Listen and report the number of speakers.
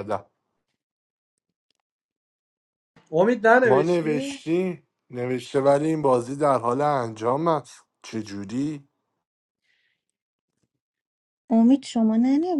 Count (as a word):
three